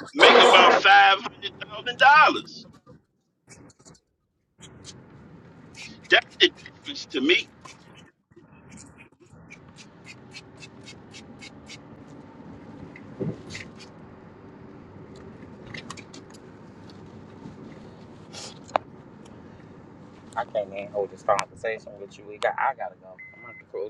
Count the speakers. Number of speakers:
2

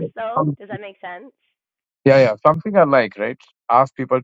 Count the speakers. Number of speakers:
2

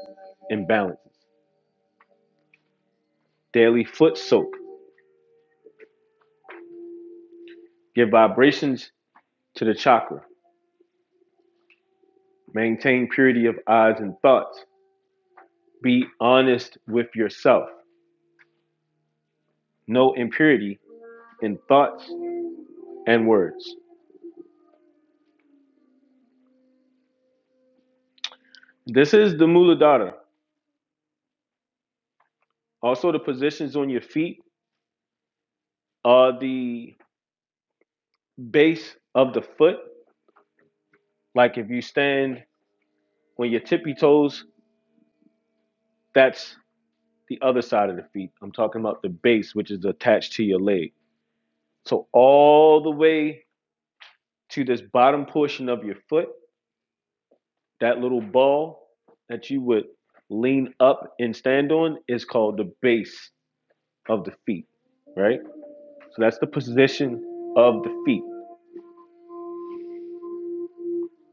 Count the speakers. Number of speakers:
1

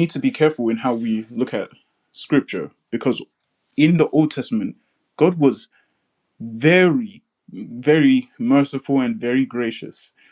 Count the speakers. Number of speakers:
1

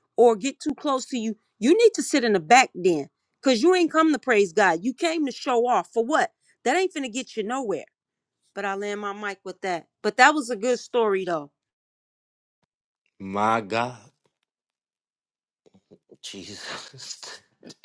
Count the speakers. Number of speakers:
2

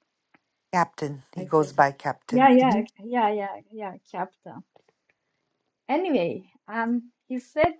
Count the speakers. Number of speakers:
2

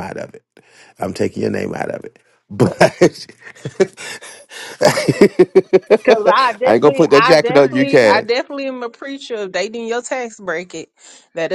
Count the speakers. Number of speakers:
2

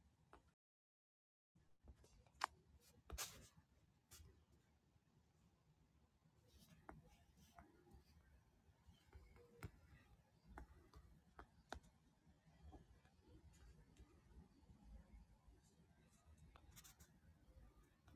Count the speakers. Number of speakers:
0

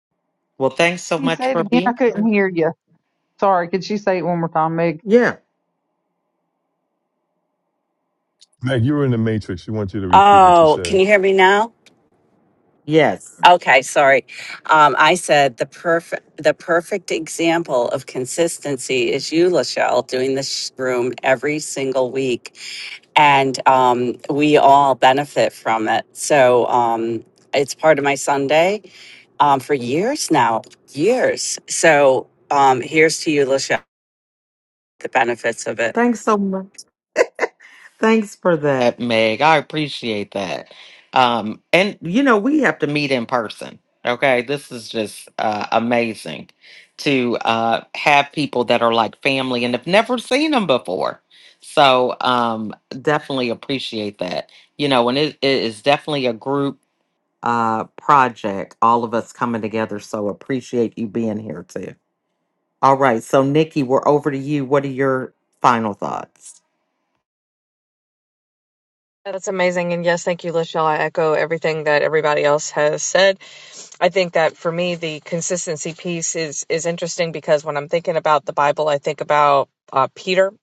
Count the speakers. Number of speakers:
5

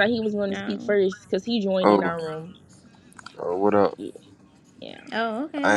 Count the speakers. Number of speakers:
3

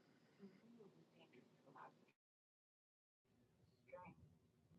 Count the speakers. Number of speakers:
0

